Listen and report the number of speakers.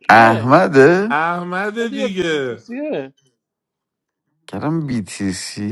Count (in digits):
3